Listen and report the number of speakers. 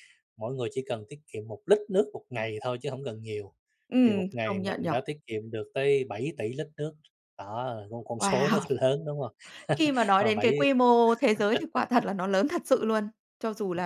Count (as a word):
two